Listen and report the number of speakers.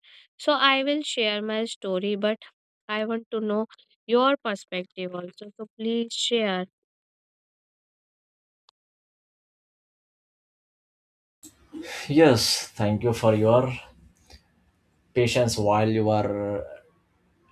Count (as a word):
two